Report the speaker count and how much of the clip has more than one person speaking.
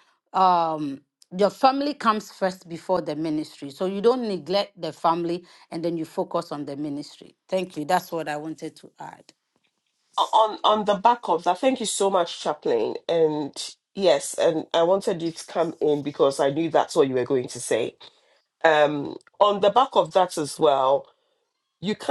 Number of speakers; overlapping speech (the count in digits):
2, no overlap